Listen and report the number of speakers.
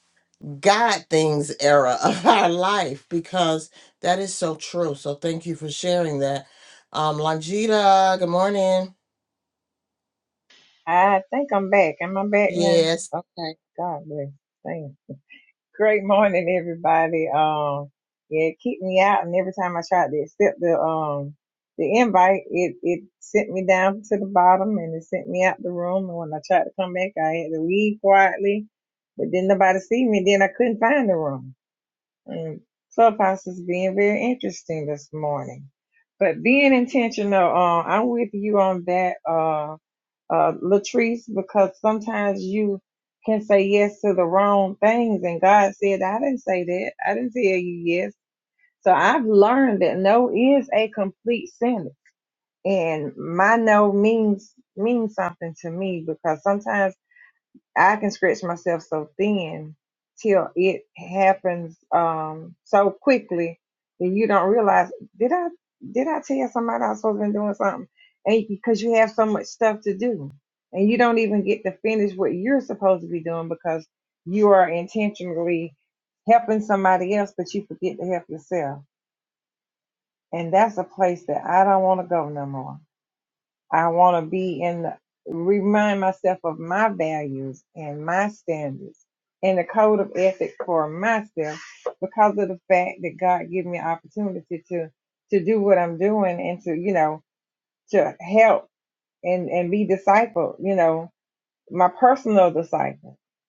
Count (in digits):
2